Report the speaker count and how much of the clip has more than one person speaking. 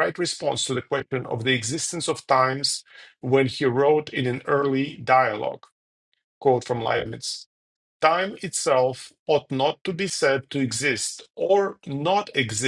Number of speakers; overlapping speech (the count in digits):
1, no overlap